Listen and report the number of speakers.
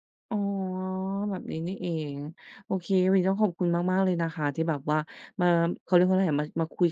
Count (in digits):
1